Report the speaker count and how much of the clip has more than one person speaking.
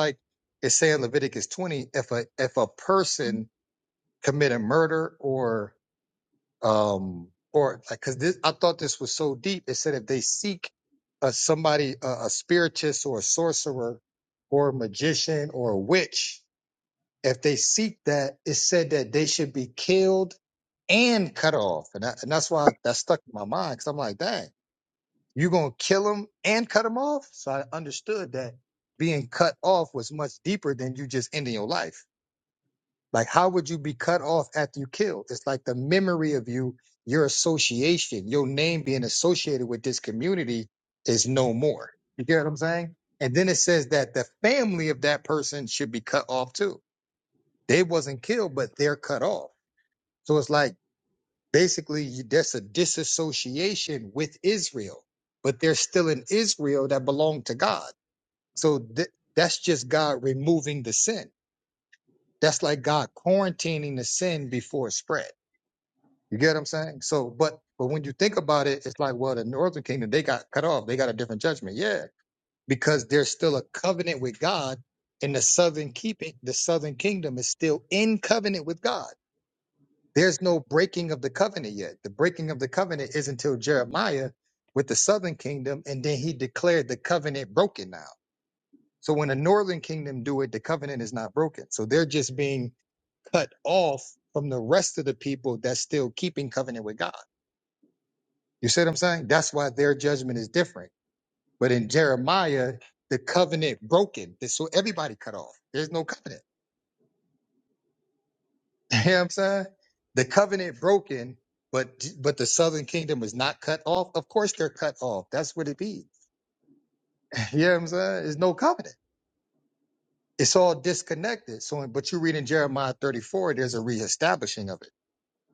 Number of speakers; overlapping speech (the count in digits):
1, no overlap